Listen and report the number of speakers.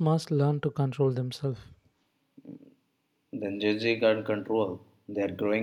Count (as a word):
two